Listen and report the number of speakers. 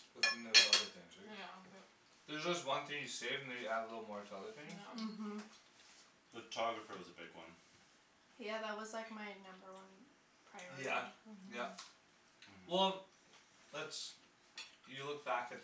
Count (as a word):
four